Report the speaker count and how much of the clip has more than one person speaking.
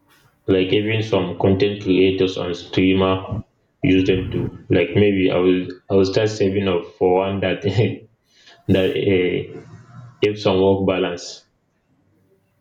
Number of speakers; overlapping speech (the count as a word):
one, no overlap